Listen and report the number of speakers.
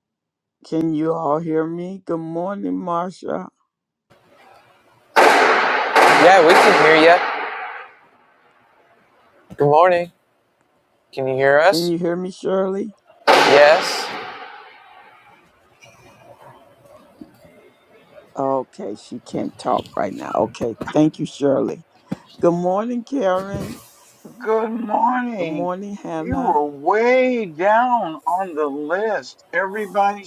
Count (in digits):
3